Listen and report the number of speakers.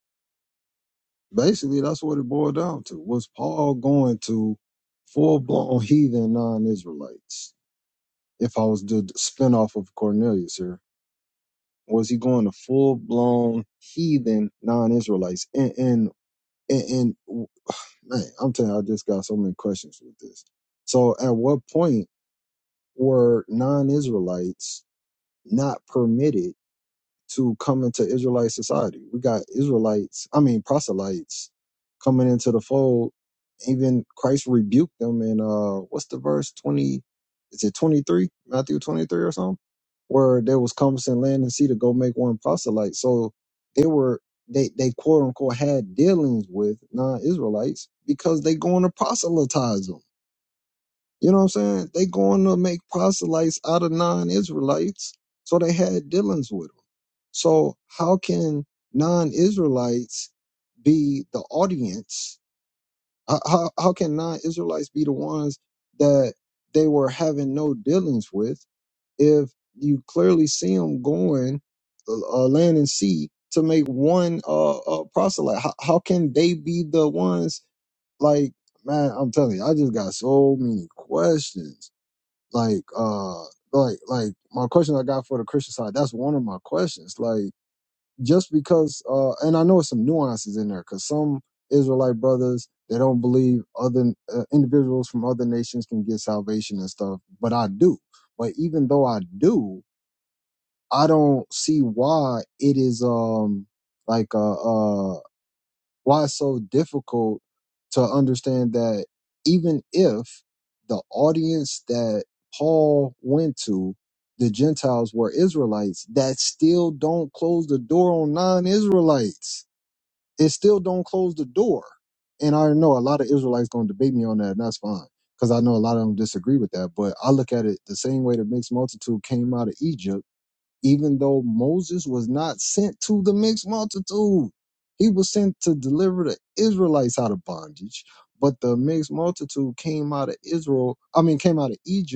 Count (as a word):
one